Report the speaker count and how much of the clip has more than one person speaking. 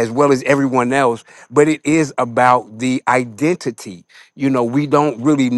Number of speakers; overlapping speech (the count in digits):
1, no overlap